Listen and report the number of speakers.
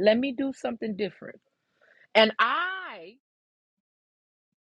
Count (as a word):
one